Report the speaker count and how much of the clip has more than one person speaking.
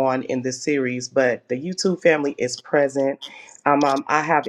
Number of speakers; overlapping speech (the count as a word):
one, no overlap